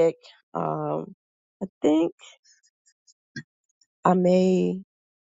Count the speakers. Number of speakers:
one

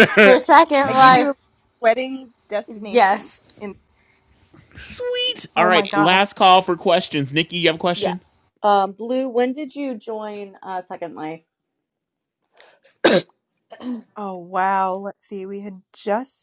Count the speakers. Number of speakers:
four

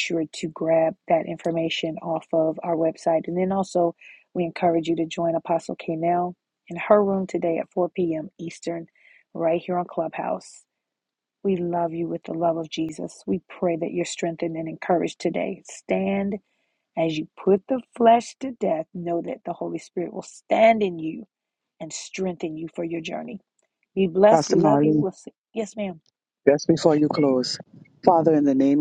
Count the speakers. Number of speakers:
two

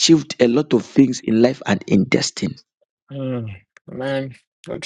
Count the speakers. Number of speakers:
two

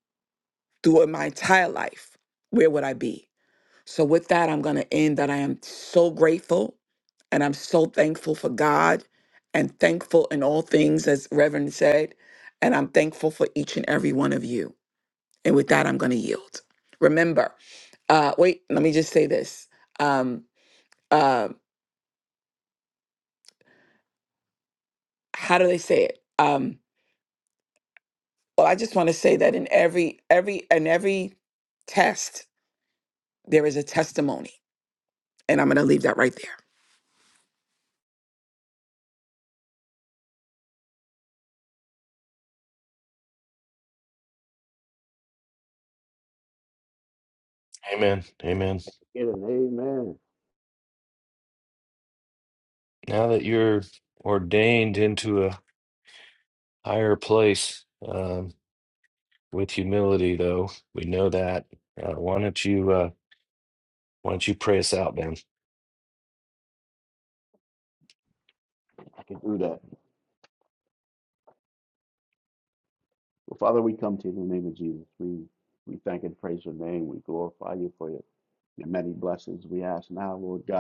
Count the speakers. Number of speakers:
three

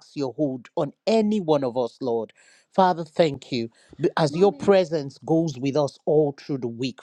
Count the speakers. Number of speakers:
one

